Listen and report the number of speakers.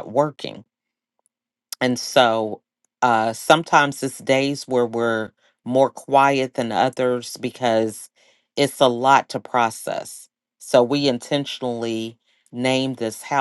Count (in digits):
1